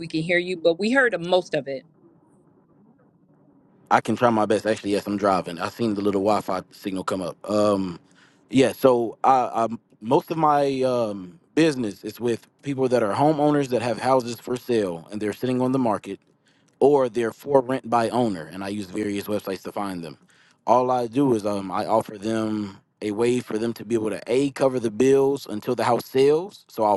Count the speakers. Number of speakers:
2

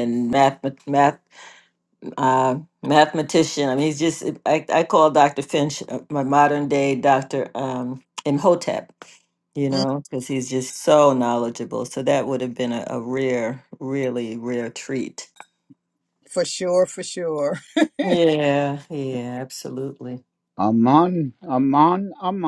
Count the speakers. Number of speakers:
3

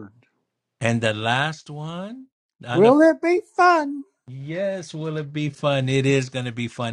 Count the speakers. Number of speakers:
2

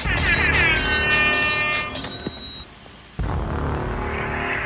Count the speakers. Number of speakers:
0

